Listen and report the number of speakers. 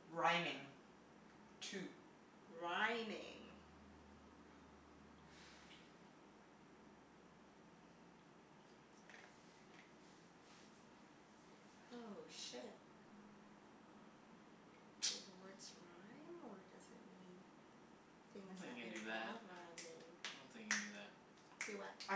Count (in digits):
3